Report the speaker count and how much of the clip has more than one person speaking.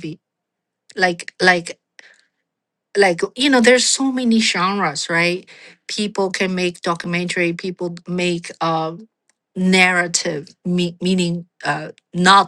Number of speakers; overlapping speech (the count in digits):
1, no overlap